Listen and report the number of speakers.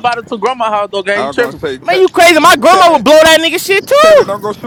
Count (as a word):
three